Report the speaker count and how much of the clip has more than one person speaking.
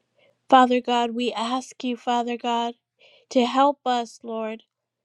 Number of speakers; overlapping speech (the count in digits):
1, no overlap